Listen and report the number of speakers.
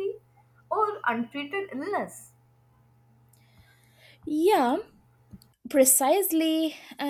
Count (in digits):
2